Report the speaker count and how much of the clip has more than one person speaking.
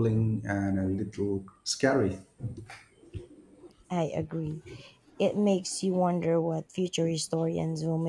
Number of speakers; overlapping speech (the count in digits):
2, no overlap